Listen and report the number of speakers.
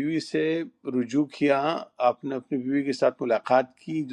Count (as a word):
one